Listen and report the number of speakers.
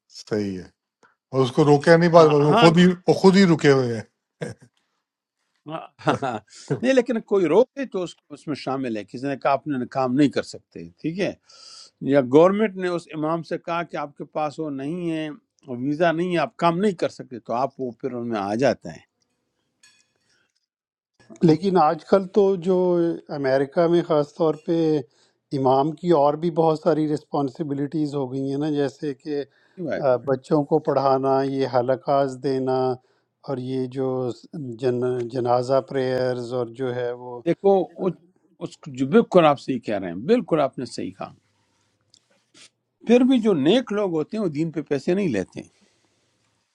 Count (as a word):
three